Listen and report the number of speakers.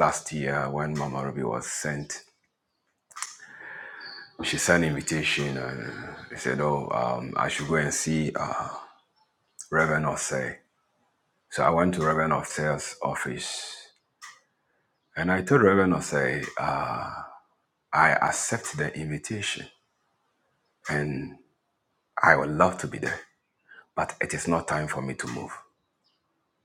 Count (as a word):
one